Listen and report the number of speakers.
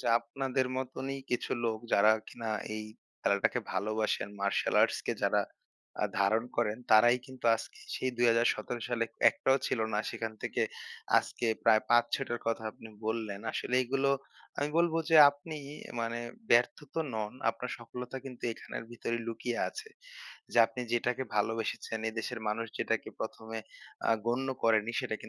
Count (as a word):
one